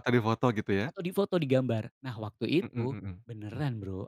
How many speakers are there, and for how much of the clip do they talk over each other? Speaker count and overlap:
two, about 9%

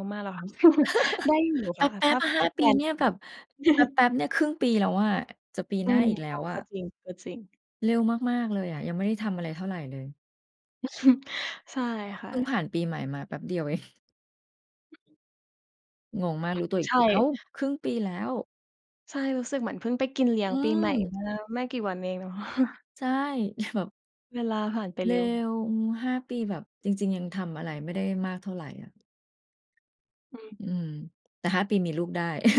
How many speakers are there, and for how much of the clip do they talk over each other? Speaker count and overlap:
two, about 8%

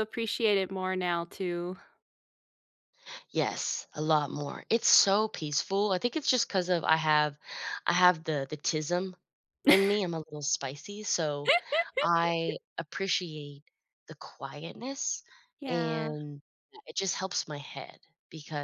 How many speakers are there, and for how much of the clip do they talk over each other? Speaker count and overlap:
two, about 2%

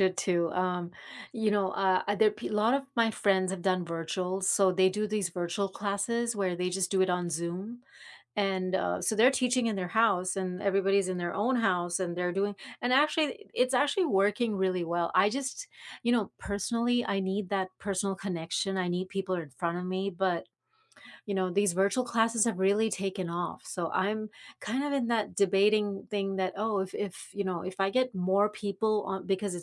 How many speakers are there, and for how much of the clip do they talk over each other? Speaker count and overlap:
one, no overlap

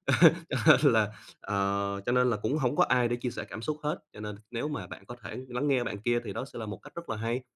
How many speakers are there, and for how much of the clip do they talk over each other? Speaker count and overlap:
one, no overlap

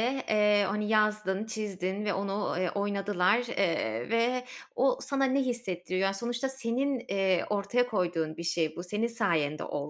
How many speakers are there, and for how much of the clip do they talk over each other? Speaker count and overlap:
one, no overlap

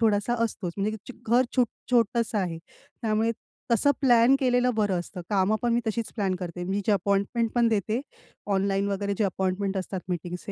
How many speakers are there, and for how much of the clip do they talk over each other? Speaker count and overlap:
one, no overlap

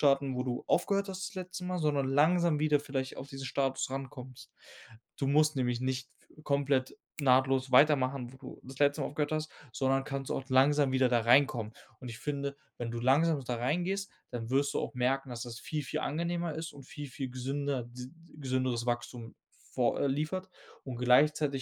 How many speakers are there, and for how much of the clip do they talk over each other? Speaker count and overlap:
one, no overlap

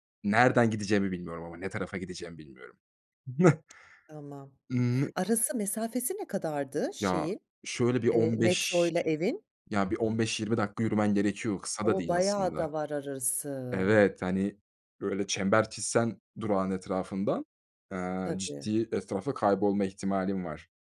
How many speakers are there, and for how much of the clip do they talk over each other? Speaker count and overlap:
two, about 12%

